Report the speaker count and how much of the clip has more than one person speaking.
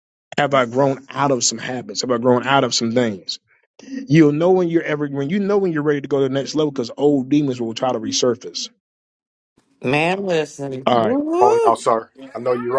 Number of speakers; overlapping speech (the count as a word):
three, about 6%